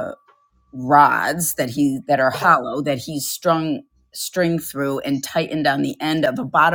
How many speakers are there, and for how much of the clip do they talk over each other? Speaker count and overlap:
1, no overlap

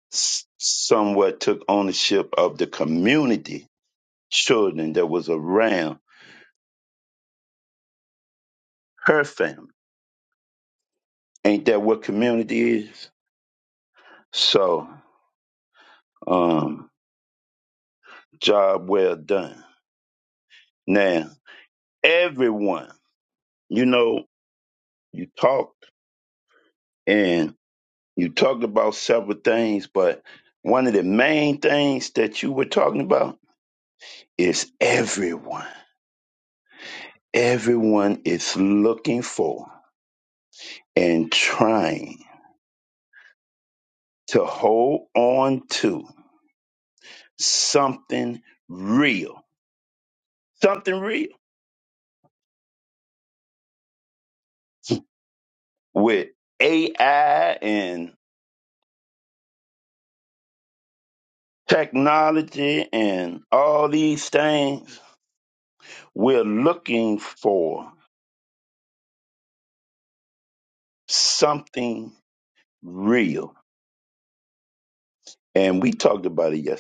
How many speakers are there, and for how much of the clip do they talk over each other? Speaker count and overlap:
1, no overlap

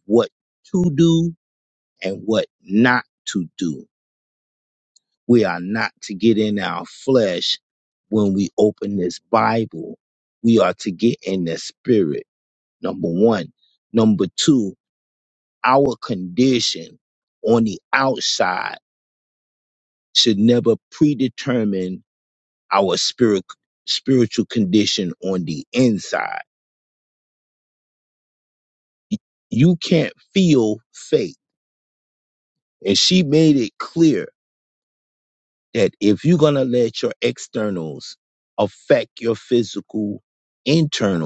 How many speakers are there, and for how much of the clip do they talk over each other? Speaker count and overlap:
1, no overlap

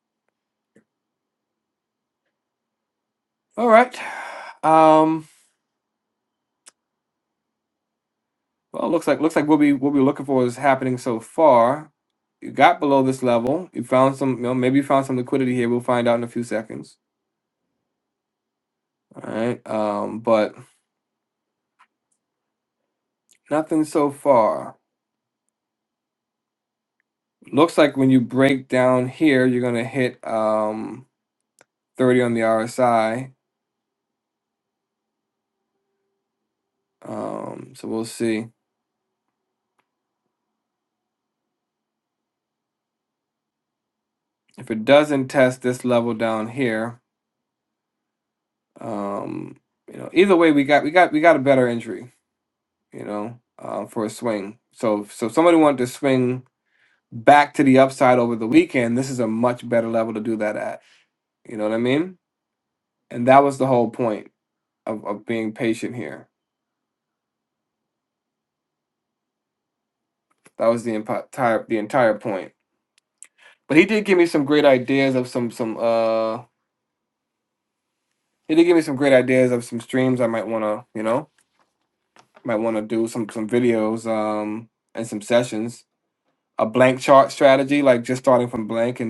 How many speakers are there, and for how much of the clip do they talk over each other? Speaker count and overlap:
1, no overlap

